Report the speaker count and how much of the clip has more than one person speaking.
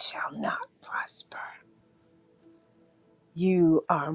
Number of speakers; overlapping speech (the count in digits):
1, no overlap